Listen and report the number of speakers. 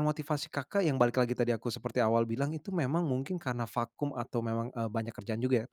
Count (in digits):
1